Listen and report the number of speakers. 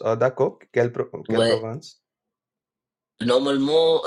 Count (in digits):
2